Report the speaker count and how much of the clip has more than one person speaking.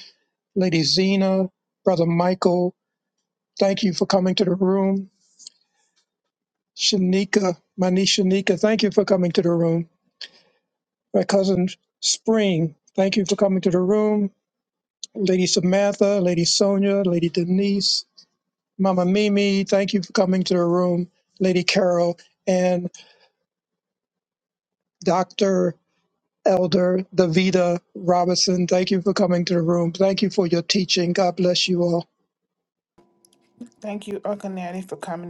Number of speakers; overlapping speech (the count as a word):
two, no overlap